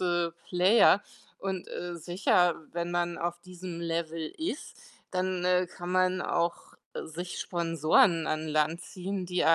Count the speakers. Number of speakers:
1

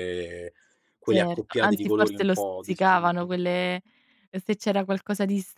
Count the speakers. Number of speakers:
2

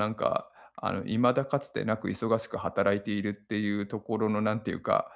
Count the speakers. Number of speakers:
1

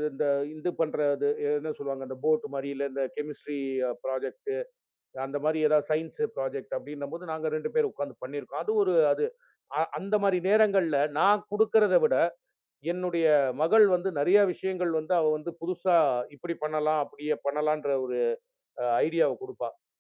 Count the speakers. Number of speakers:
1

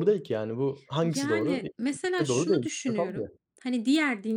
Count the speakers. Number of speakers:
2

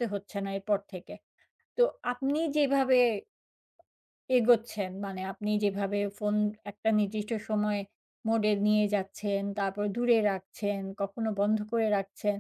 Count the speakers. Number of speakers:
1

